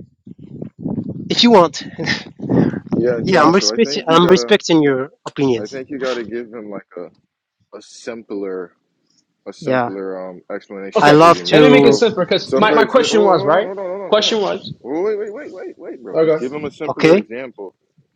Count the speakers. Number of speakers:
3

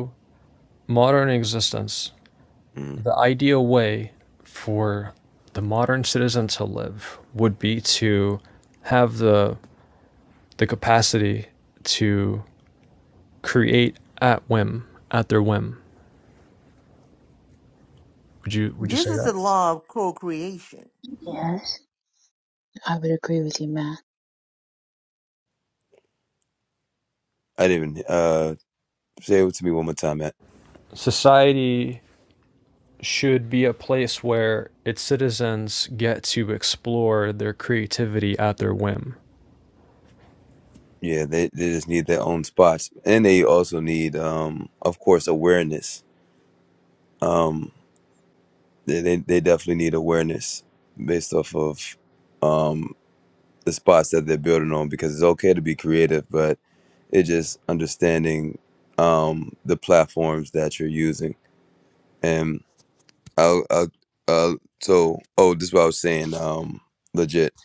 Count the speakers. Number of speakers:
4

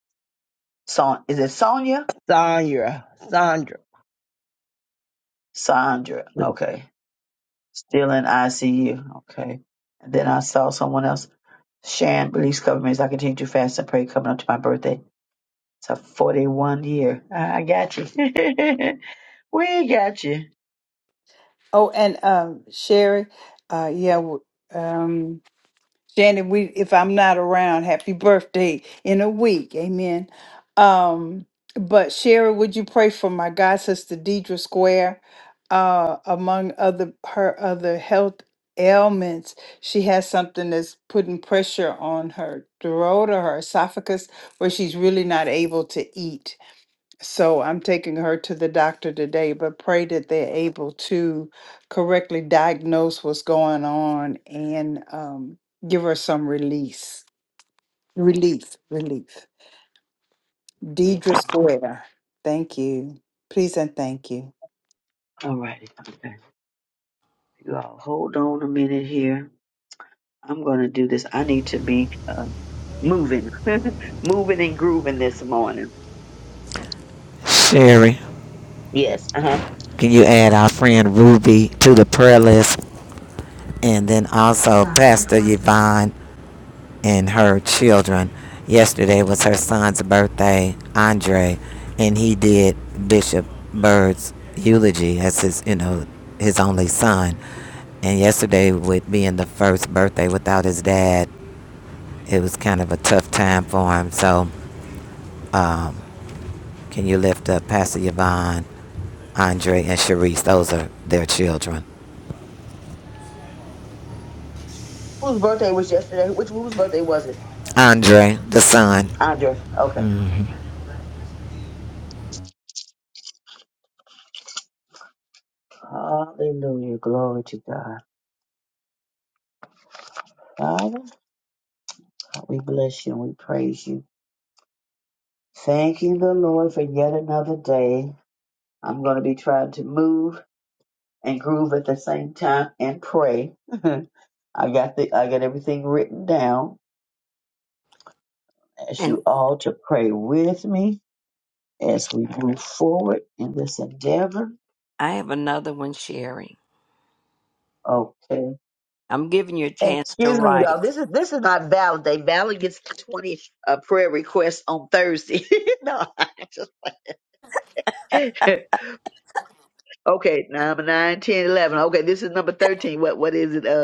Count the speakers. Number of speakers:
5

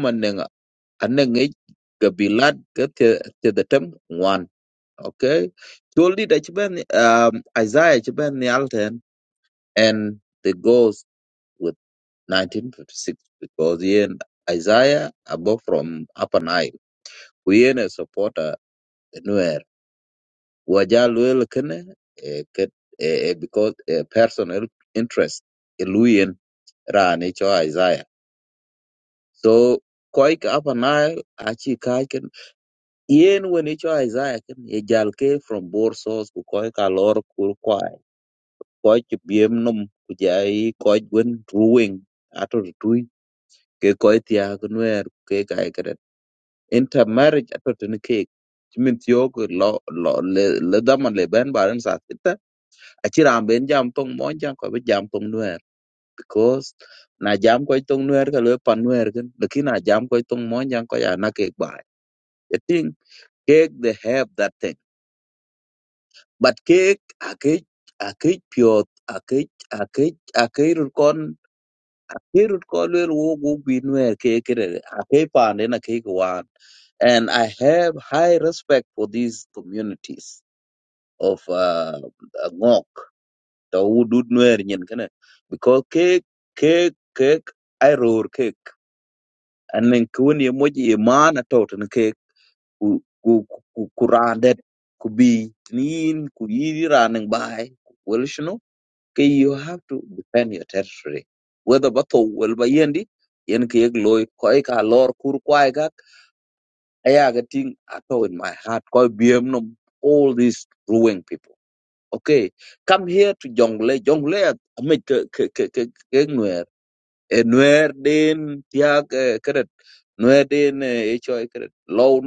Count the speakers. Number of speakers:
1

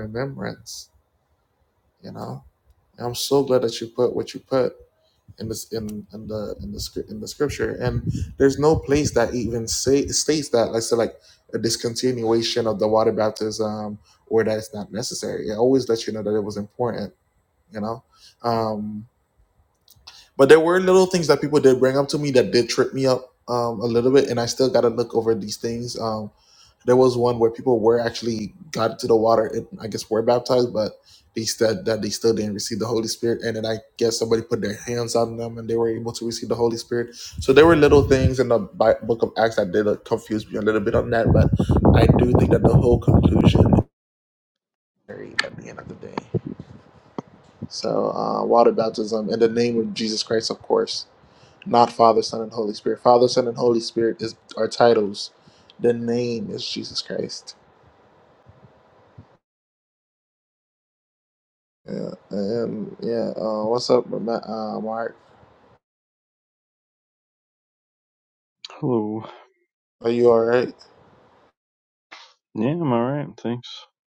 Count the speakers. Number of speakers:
2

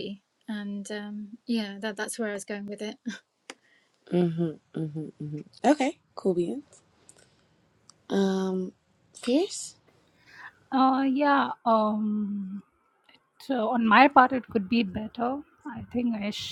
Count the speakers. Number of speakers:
3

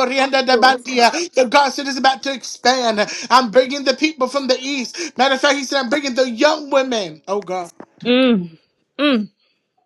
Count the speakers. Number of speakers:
2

